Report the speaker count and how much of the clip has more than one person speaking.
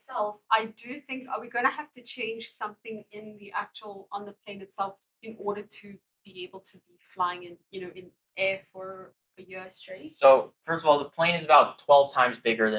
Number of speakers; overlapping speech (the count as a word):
two, about 1%